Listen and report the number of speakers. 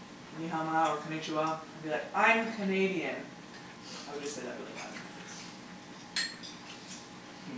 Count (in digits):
1